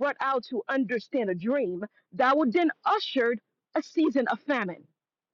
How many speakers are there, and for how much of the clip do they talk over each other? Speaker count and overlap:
one, no overlap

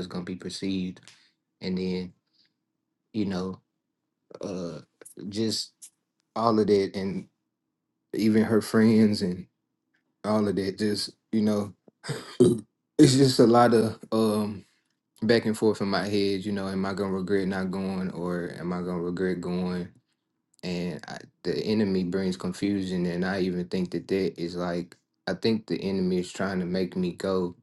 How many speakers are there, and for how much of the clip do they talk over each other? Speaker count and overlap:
one, no overlap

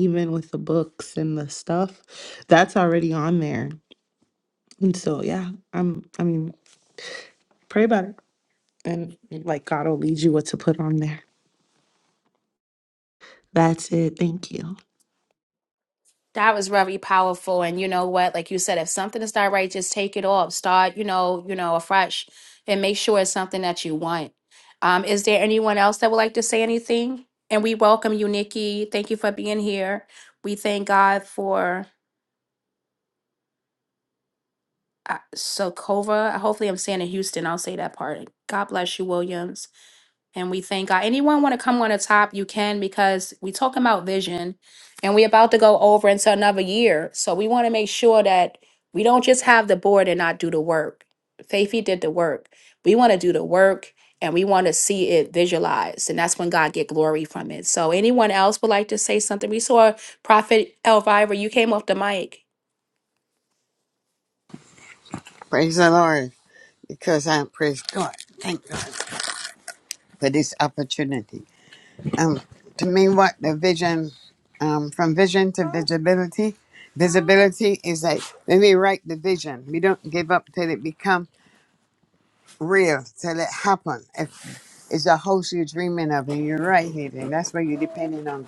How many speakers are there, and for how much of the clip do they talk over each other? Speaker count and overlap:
three, no overlap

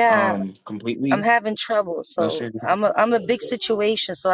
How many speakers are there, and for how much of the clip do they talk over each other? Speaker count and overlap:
two, about 20%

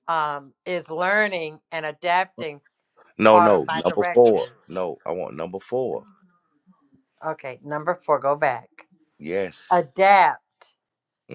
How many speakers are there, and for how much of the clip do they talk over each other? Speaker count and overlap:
two, about 10%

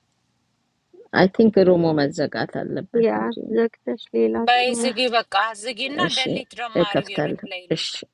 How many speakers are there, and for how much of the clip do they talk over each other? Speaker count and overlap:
three, about 28%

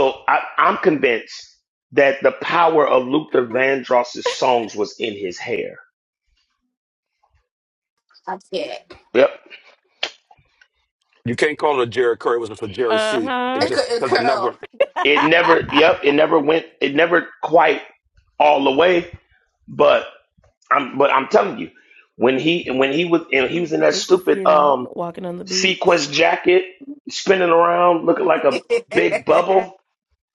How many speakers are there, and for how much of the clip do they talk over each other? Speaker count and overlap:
four, about 9%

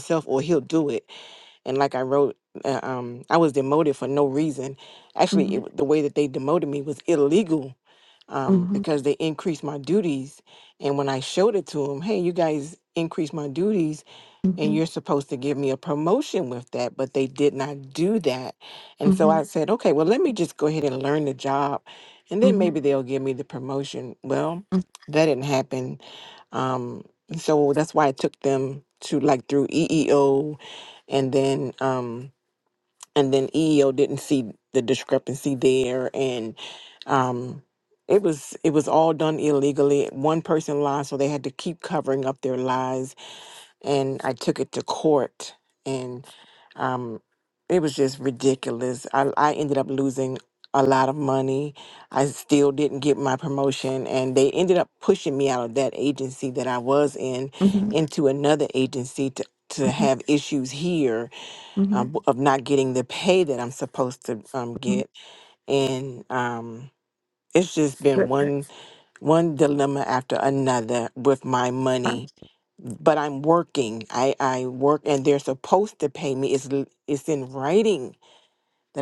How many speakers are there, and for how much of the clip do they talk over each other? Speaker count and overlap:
two, about 2%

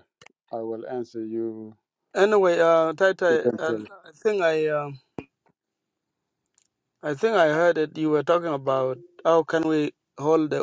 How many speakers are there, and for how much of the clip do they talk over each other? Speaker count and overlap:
two, about 6%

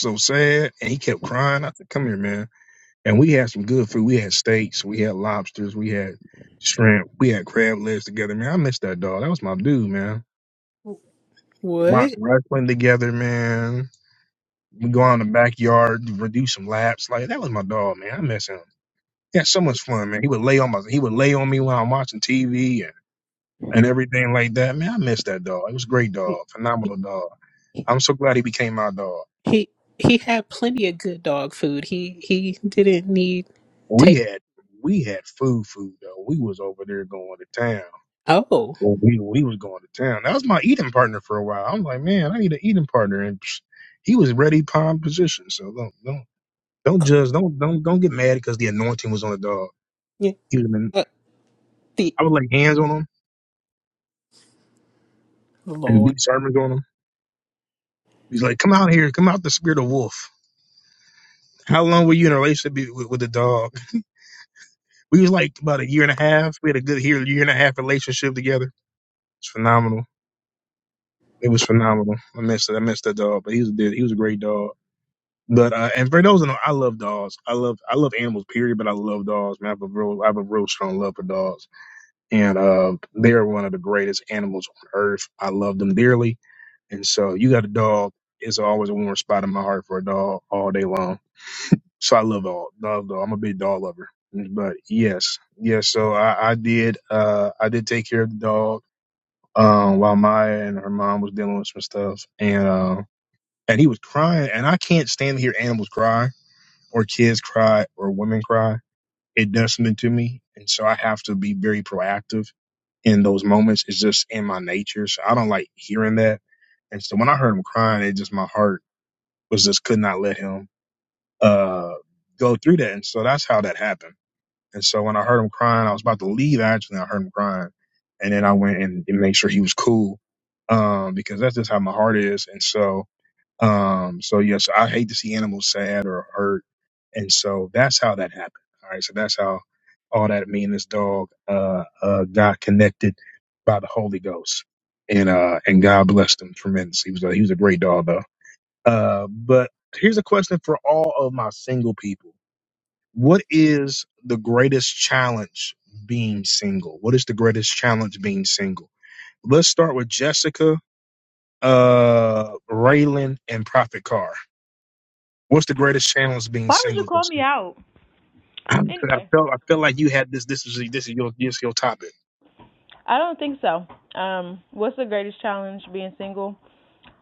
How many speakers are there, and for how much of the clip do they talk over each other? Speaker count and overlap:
three, about 1%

